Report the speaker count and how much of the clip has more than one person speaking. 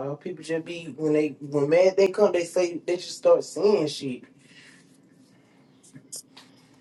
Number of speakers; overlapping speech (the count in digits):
1, no overlap